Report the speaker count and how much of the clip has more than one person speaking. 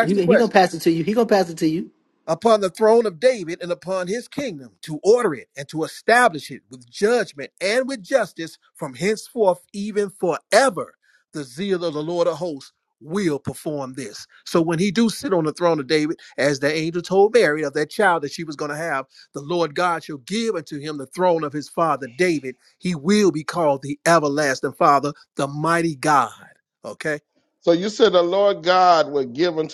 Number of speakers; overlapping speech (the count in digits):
3, about 2%